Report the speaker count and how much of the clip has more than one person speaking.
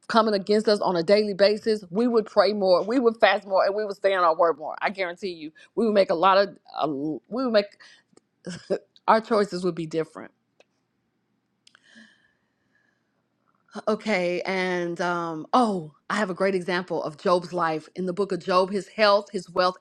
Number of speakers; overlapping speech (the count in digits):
1, no overlap